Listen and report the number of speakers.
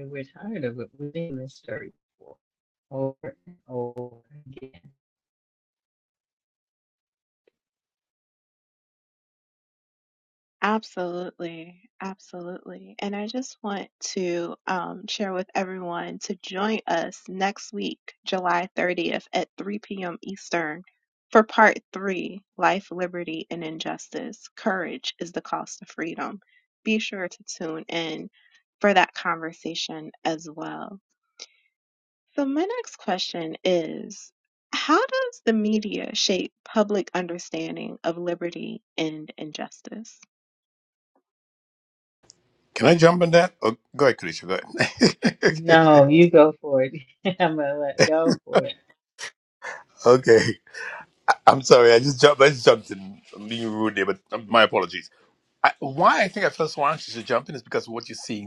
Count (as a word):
three